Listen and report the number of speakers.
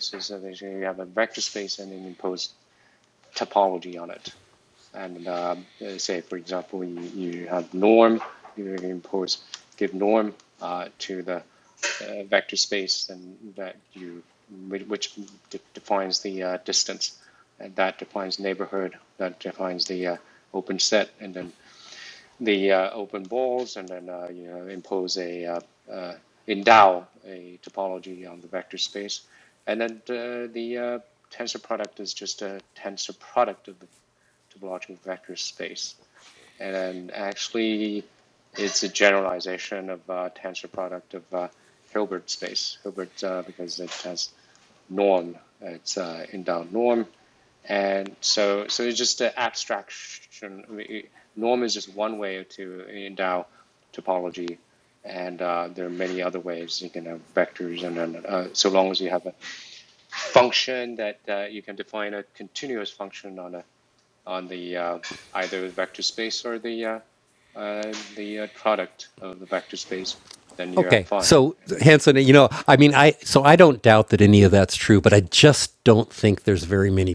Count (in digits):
2